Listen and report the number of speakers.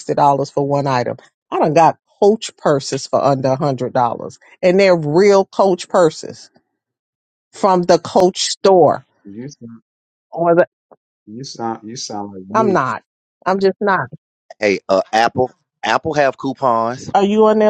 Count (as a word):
three